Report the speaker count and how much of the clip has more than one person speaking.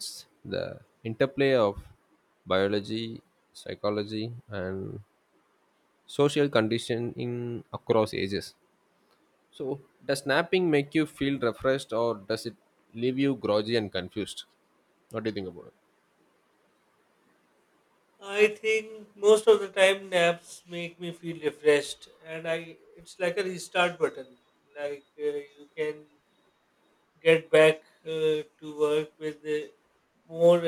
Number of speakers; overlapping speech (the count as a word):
two, no overlap